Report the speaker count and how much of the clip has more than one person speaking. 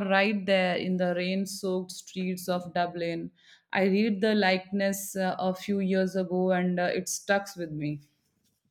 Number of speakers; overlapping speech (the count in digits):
1, no overlap